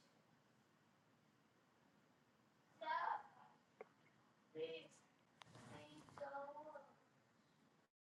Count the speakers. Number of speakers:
0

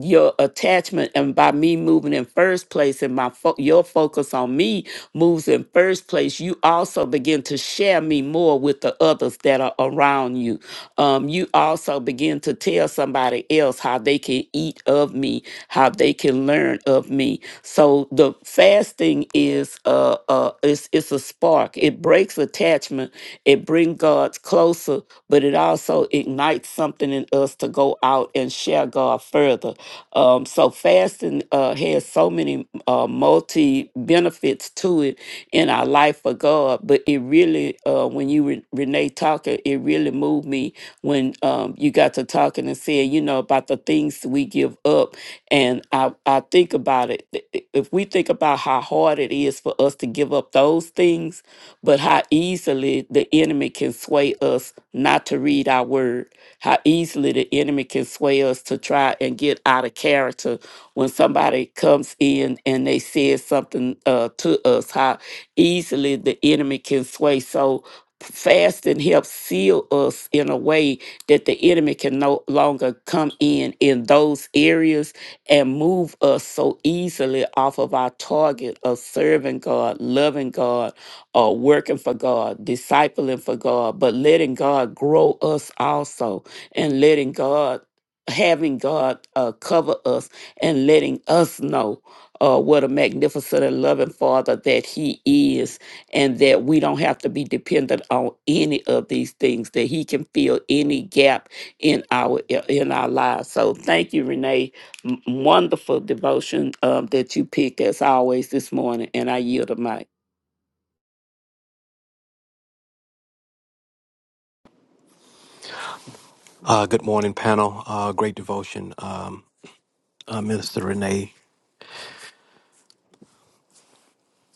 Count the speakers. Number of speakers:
2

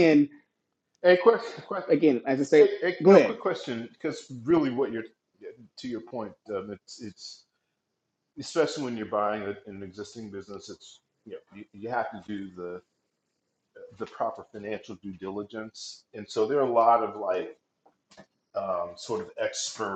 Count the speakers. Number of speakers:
2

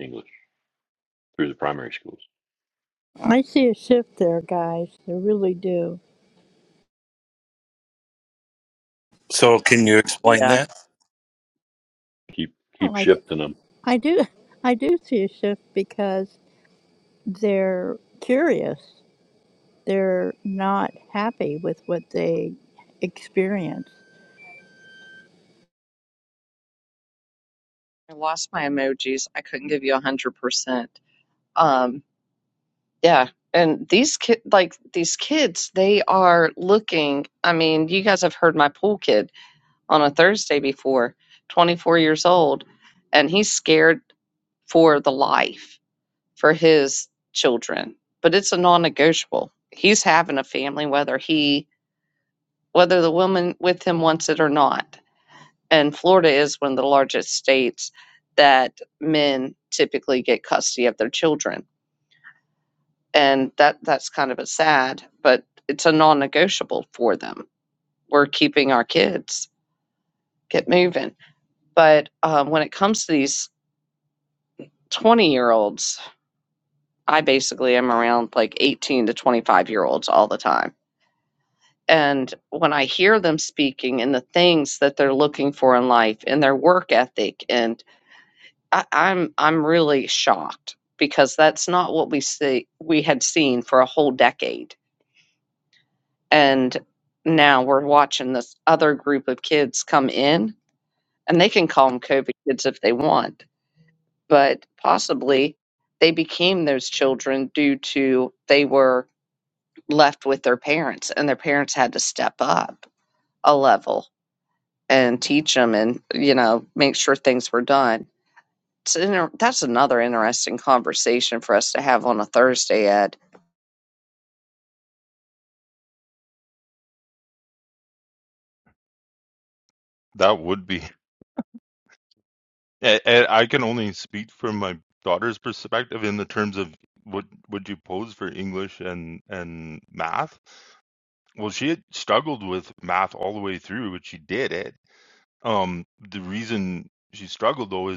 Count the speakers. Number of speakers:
5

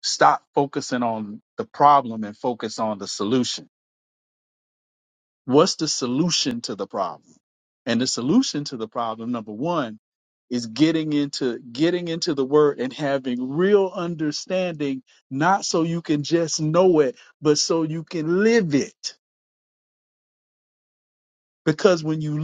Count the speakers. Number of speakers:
1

